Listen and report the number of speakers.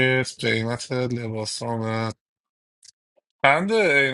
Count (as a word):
one